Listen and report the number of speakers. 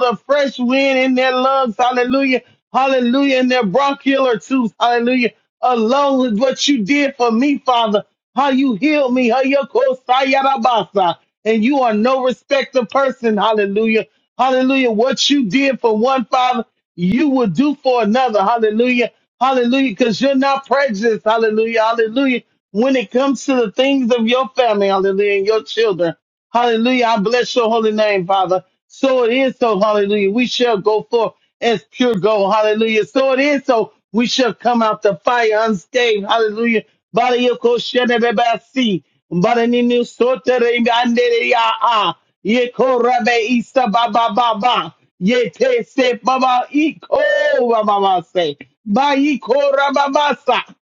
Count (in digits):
1